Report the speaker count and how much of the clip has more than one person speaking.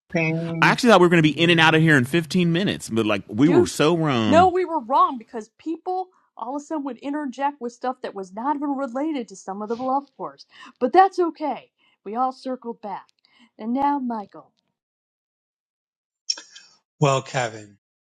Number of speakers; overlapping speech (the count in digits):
3, about 5%